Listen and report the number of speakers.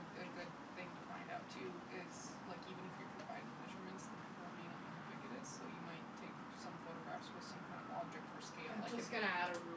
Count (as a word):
two